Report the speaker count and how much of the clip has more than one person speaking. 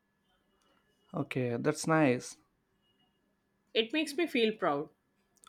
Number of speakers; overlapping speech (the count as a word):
two, no overlap